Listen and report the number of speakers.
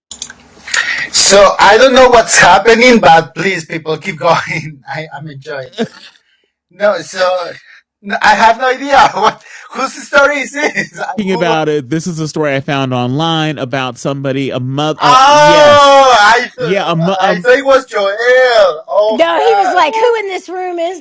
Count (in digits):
3